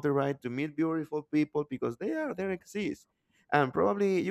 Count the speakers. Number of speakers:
one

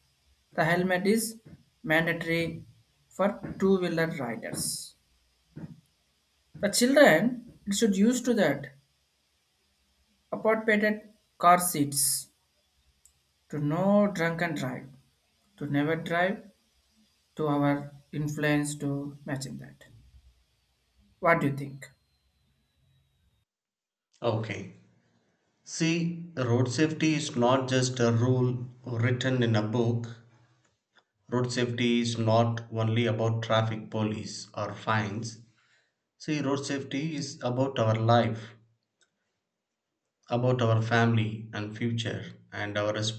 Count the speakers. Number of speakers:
two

